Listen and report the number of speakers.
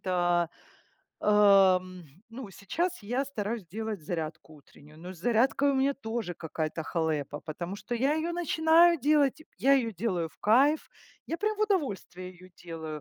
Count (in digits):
1